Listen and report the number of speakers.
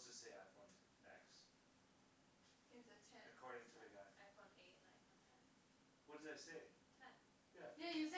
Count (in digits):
3